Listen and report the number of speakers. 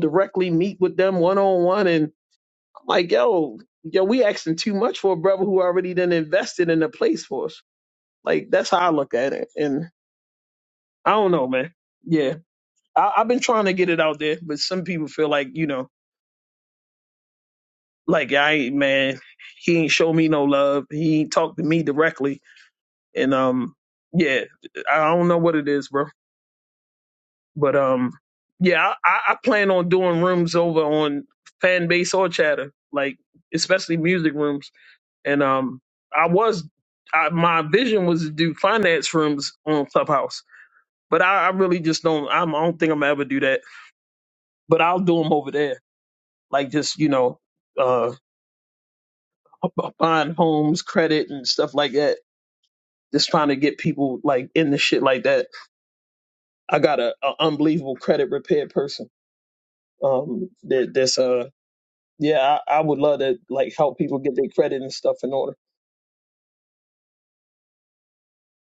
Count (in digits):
1